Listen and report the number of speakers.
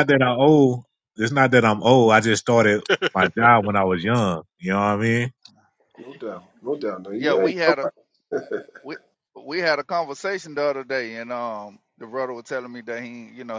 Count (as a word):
three